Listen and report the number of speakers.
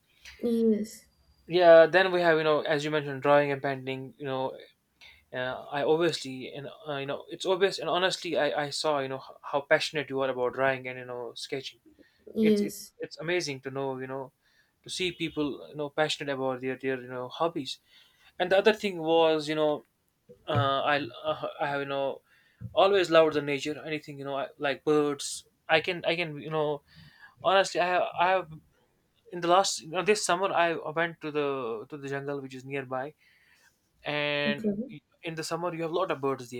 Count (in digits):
2